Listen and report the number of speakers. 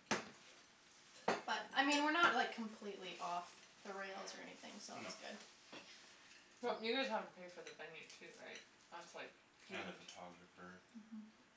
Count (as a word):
three